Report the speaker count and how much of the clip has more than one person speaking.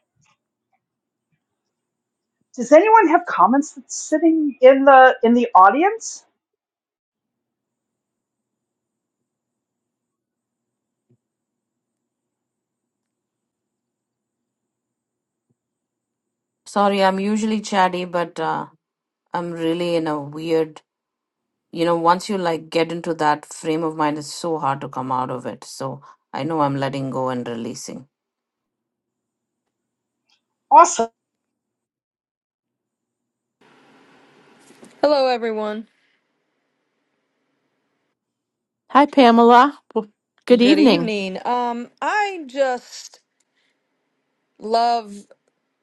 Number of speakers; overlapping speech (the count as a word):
four, about 1%